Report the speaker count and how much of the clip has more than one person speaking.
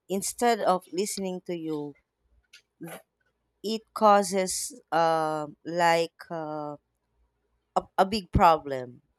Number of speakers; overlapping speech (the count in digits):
1, no overlap